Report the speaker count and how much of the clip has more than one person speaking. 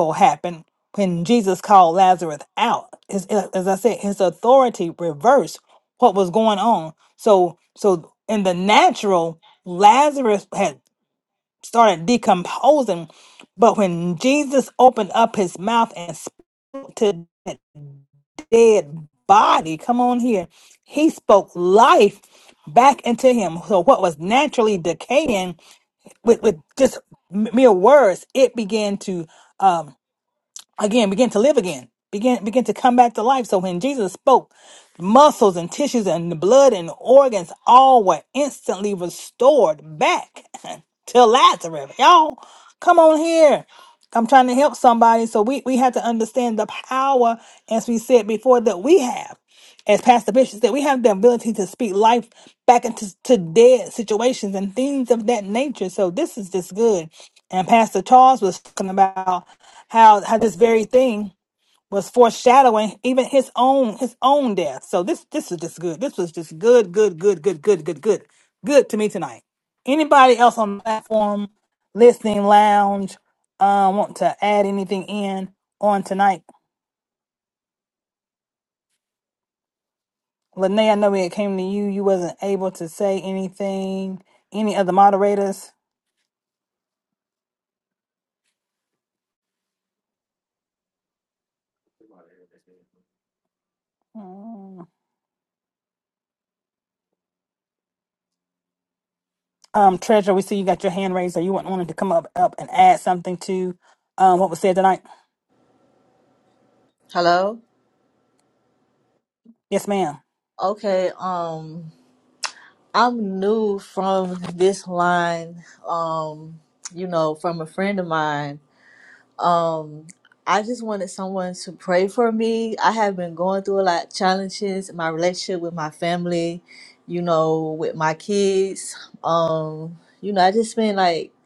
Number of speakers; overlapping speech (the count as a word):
two, no overlap